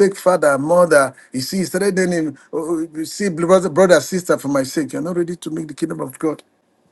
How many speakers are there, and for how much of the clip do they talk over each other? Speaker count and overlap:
1, no overlap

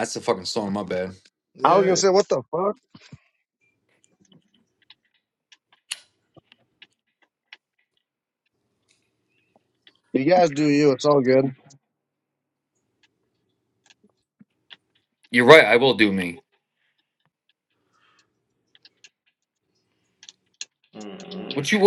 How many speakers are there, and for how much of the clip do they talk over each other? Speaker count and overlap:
3, about 2%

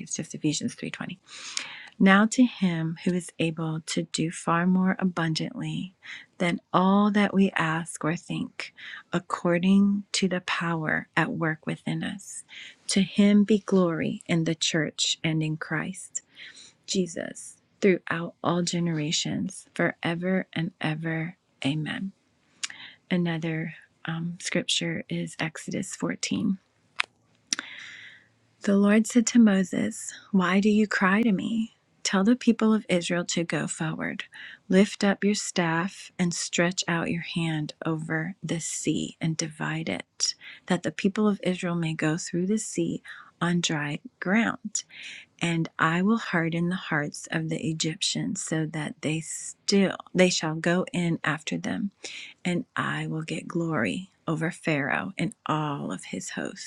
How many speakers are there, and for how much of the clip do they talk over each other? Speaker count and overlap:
1, no overlap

